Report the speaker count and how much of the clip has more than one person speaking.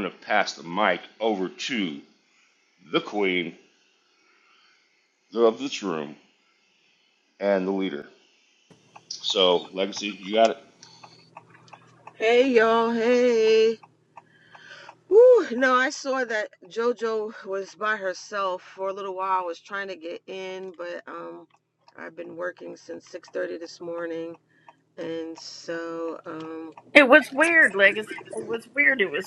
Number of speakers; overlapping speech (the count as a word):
three, no overlap